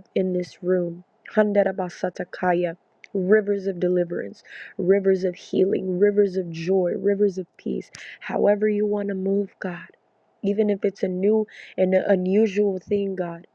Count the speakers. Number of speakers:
1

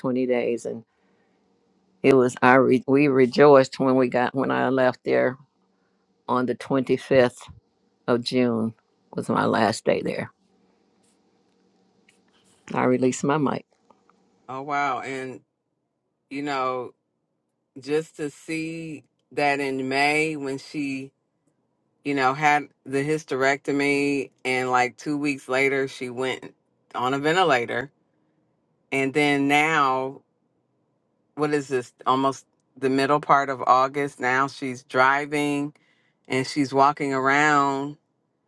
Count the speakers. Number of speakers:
2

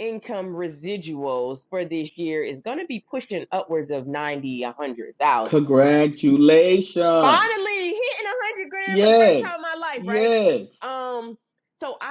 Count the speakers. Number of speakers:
2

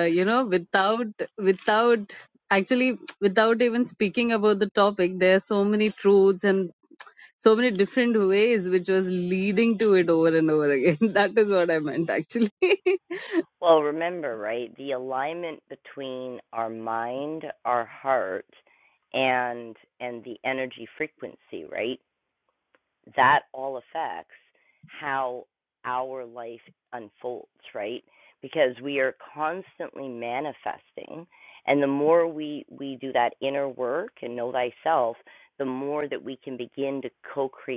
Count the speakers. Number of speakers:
2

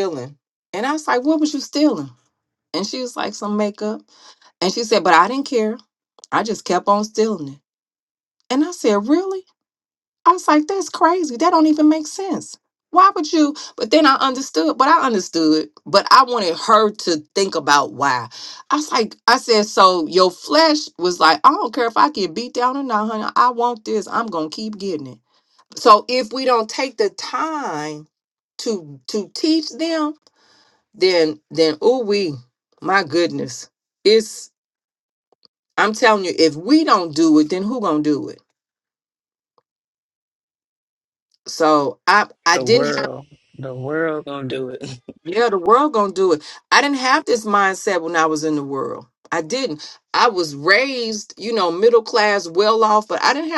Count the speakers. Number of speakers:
2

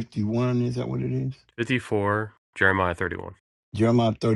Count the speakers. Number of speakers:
2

